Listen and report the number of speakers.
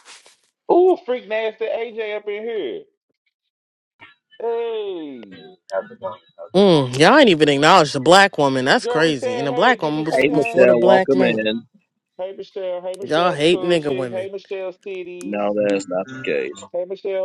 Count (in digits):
4